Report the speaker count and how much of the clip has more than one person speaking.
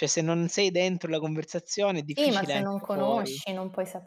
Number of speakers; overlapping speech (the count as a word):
two, about 30%